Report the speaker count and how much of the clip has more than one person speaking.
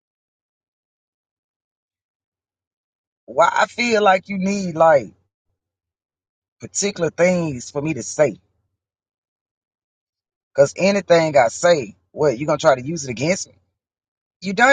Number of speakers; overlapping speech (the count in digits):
1, no overlap